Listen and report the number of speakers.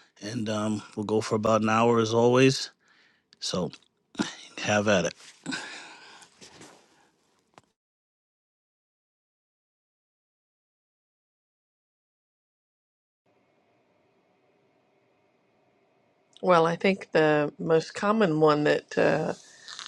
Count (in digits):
2